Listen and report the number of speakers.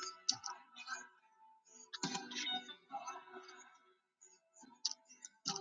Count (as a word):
zero